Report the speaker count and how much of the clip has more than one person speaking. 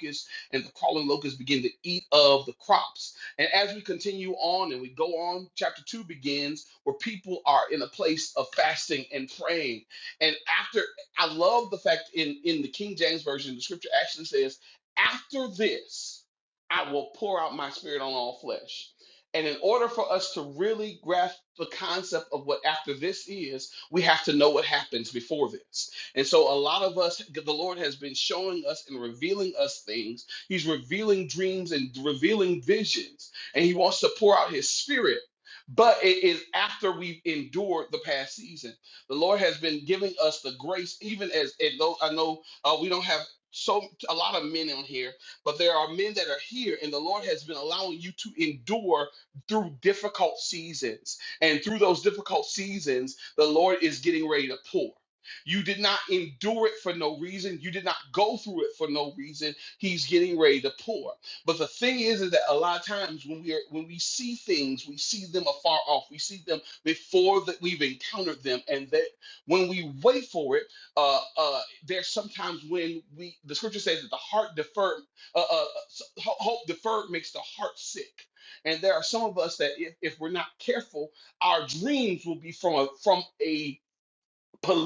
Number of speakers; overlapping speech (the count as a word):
one, no overlap